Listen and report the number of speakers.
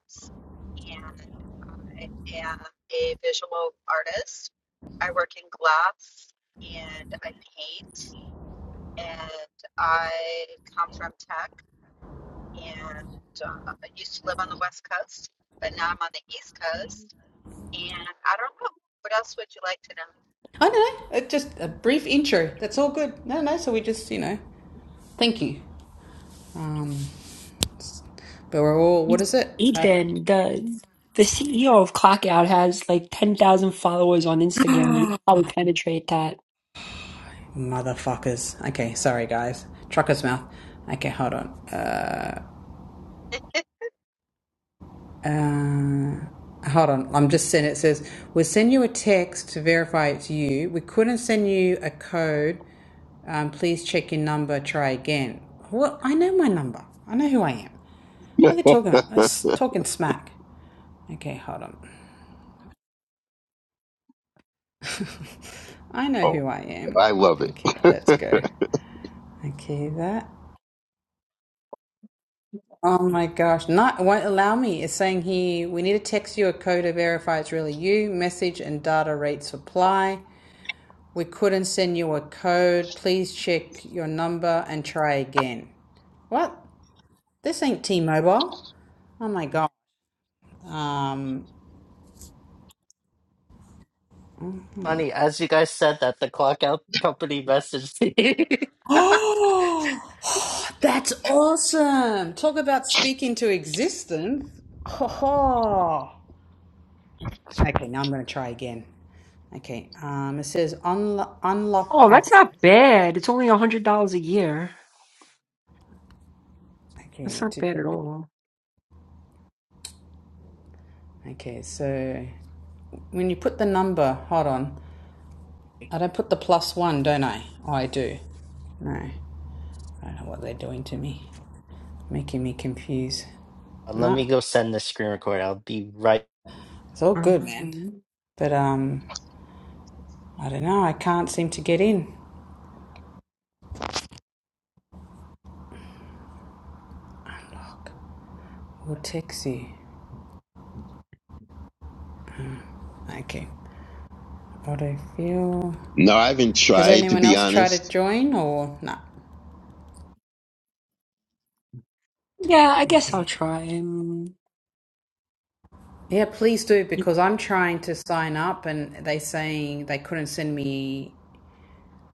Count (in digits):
5